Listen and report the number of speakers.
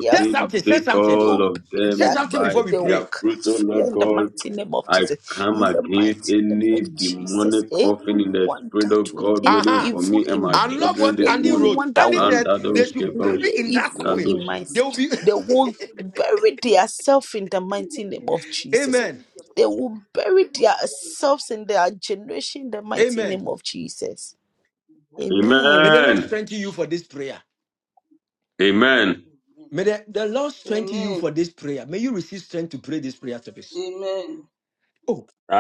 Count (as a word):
four